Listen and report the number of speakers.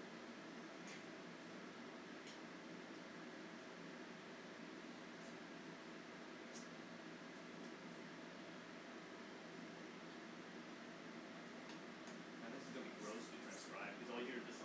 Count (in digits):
1